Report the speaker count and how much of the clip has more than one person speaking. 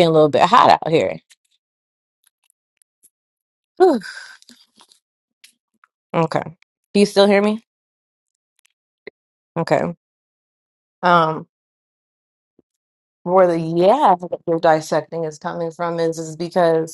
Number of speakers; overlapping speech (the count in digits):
1, no overlap